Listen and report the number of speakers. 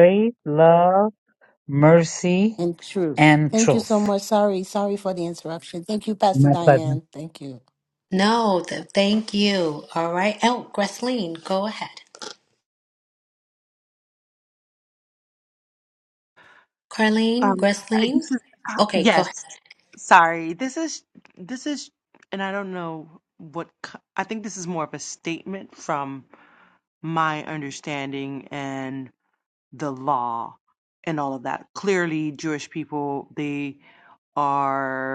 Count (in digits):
4